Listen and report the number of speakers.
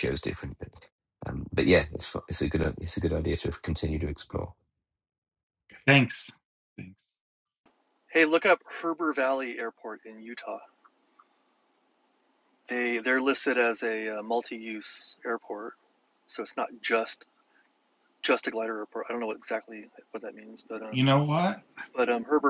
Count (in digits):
3